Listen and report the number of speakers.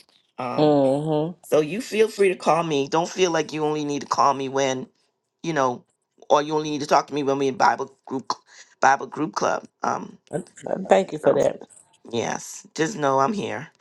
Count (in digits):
2